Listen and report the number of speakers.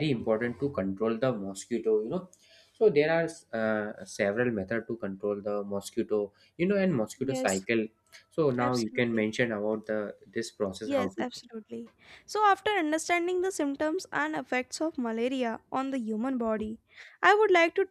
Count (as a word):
two